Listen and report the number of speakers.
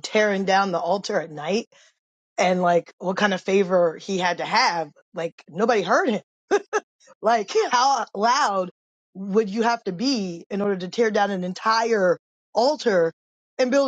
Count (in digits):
1